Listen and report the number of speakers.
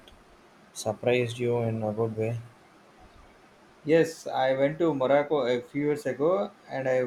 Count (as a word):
two